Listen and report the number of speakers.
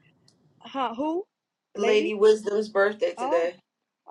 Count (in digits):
2